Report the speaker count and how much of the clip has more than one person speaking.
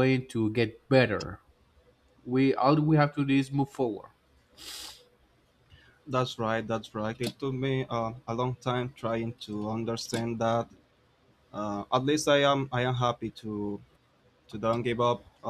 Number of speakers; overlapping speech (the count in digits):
2, no overlap